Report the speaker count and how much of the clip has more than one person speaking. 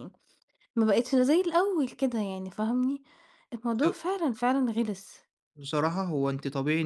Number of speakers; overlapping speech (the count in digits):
2, about 2%